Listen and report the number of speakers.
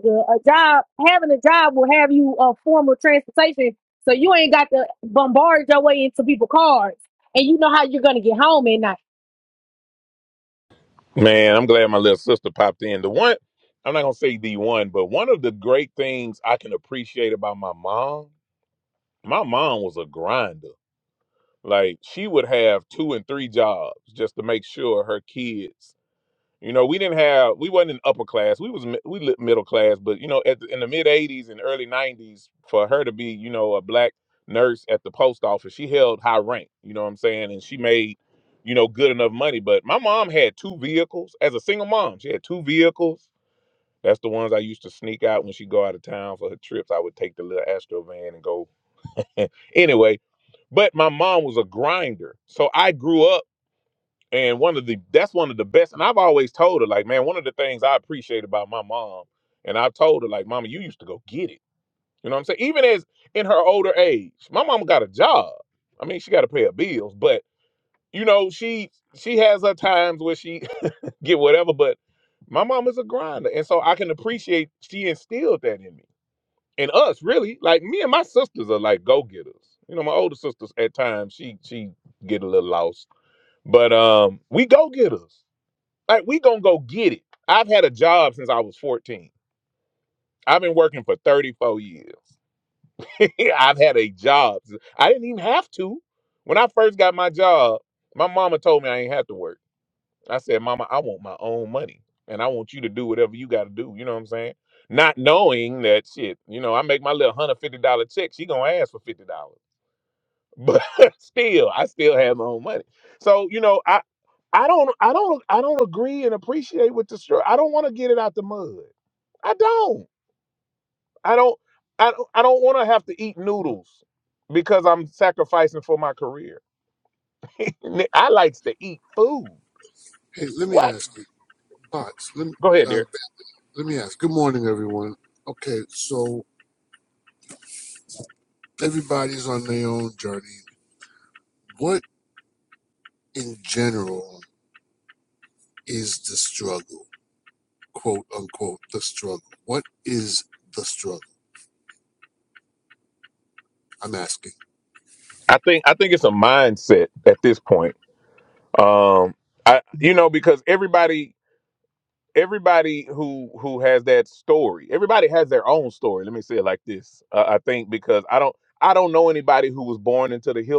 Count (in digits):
3